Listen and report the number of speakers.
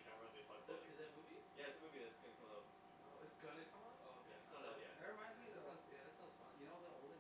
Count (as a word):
three